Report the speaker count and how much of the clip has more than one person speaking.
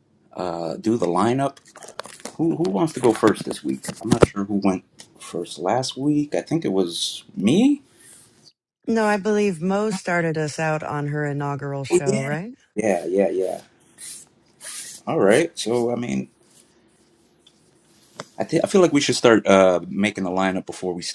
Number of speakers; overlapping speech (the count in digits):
2, about 2%